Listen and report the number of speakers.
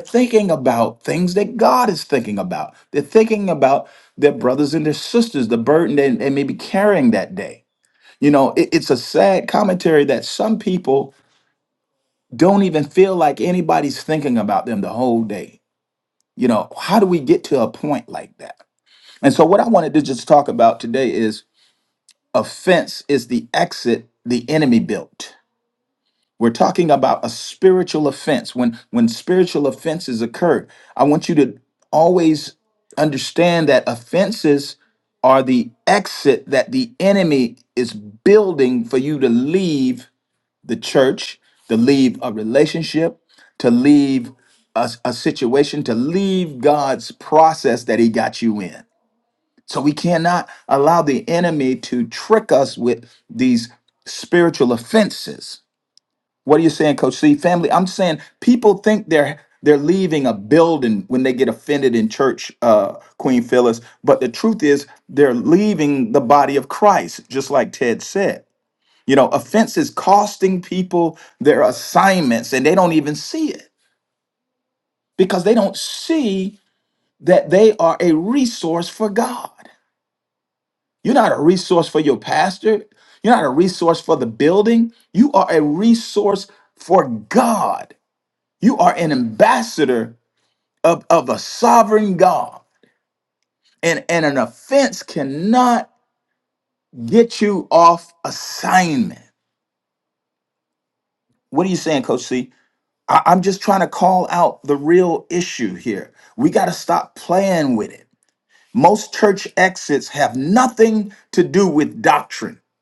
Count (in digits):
1